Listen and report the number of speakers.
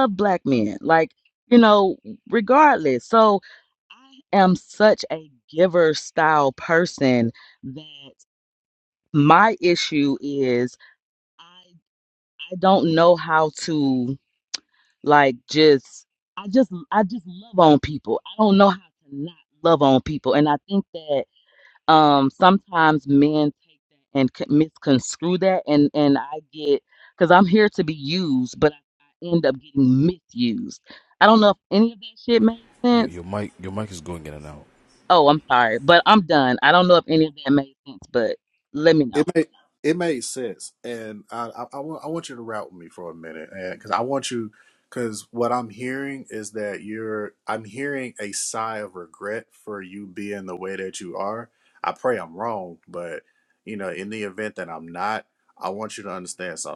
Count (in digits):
3